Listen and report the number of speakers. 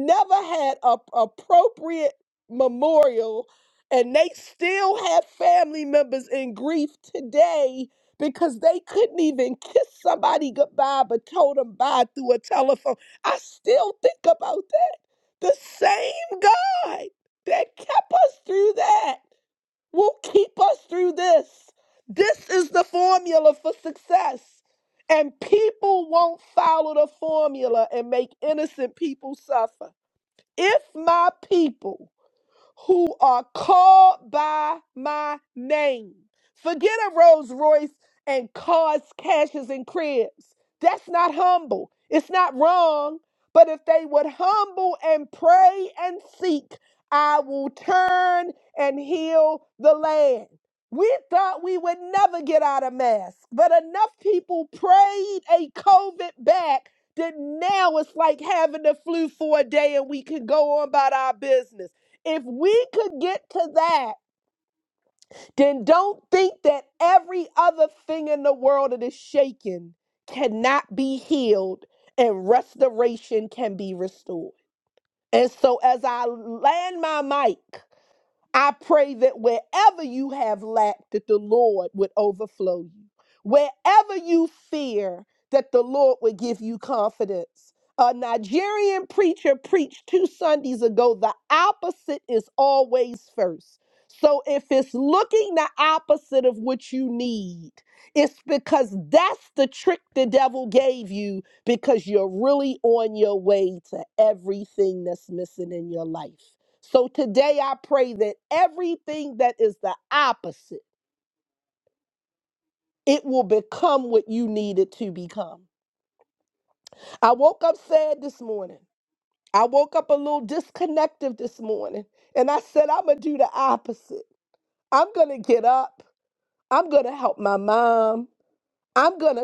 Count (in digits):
1